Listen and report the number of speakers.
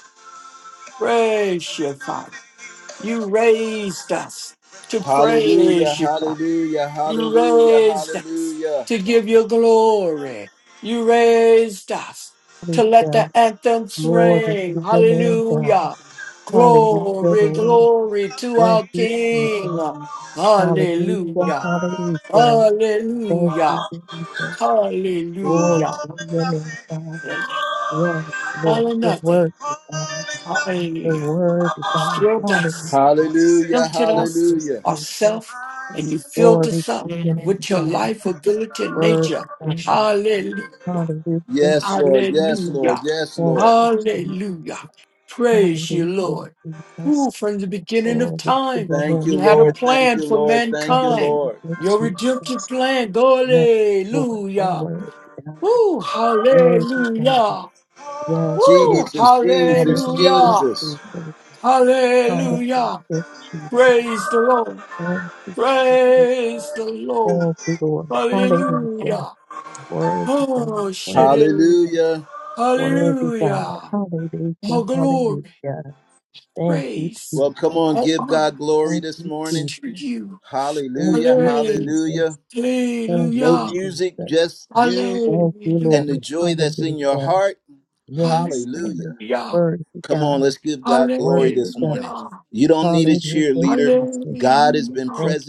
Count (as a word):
three